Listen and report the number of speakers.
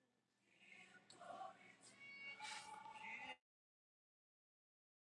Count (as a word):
zero